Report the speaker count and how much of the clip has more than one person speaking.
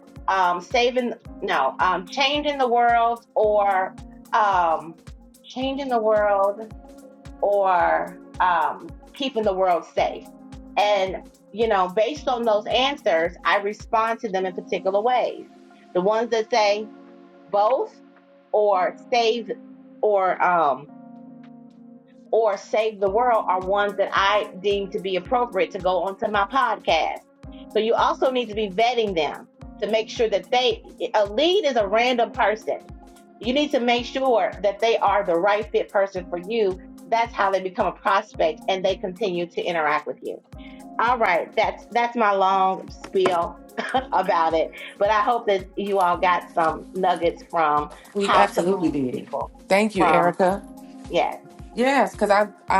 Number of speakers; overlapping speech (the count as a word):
two, about 3%